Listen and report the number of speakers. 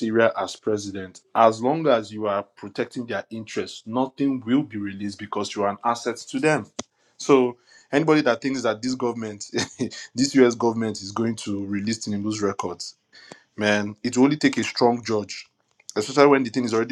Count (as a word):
one